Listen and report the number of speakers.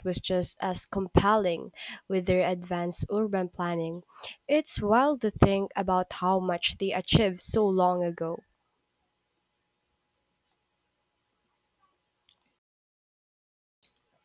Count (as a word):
one